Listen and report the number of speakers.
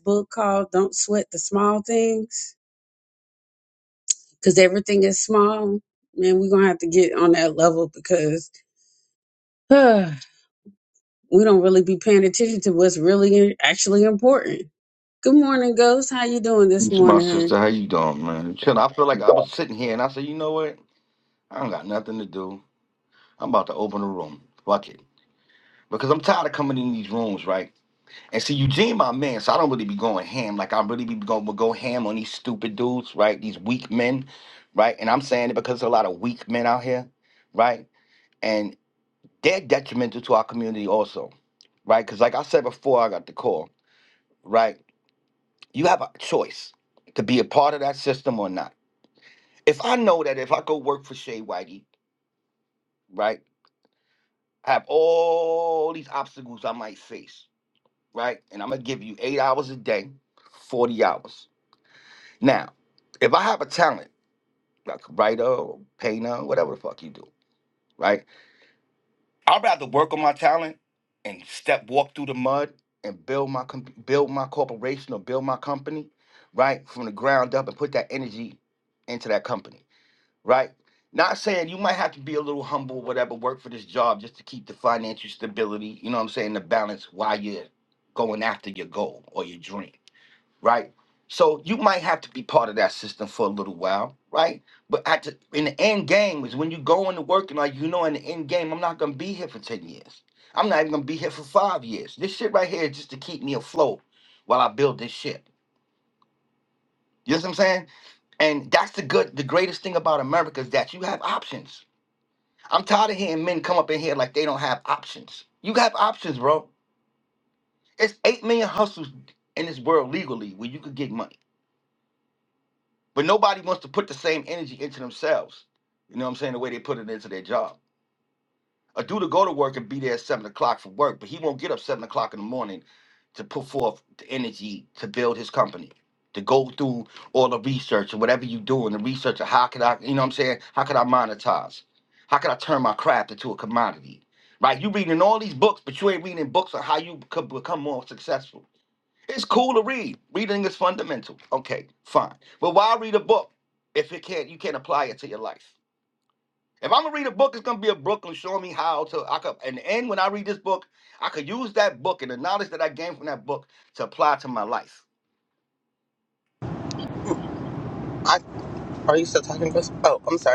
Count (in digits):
3